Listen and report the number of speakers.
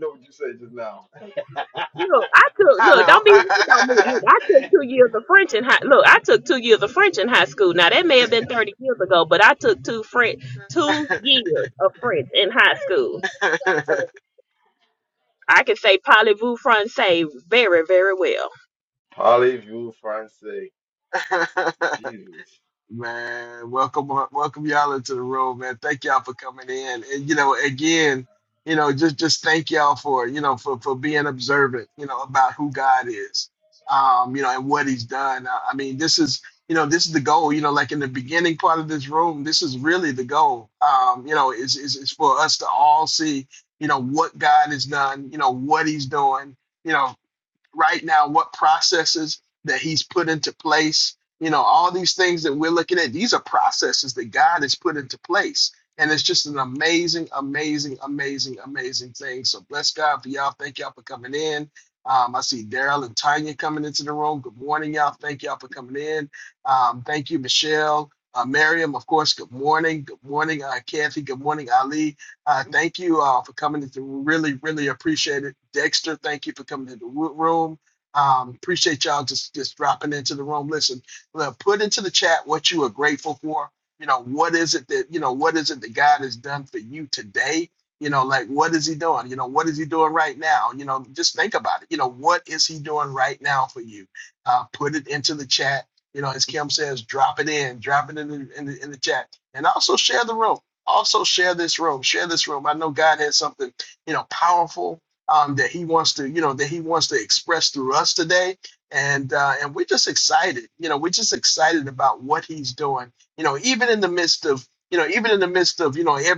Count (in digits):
3